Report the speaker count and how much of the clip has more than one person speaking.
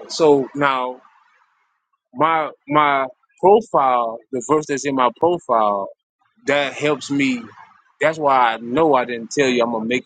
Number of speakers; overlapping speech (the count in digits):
1, no overlap